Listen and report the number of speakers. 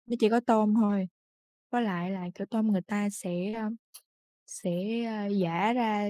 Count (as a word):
one